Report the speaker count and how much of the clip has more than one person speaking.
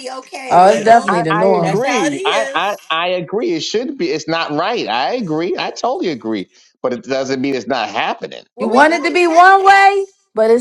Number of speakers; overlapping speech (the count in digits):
3, about 33%